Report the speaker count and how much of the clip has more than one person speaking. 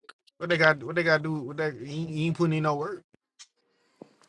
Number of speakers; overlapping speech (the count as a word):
one, no overlap